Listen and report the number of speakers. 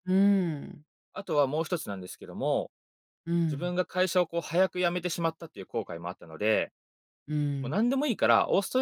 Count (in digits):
2